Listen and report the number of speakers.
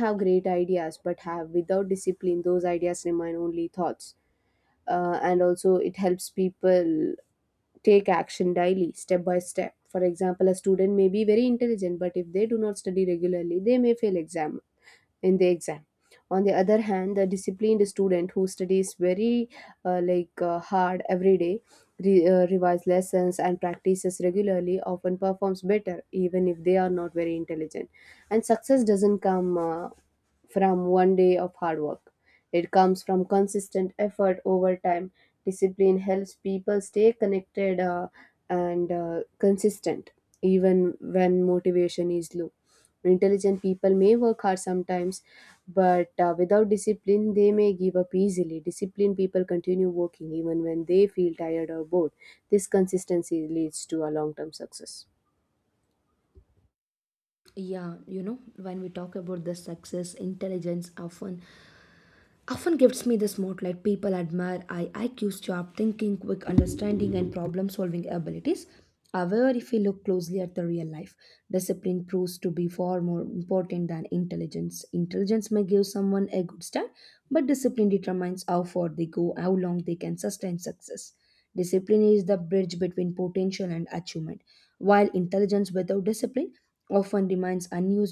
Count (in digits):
2